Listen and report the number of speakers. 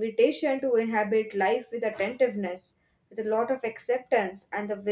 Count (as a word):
one